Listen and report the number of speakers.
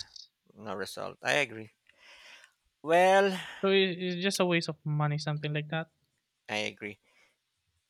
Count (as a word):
two